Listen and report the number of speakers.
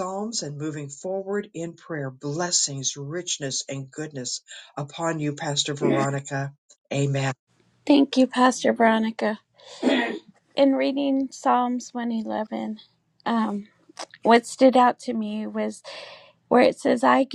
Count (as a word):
two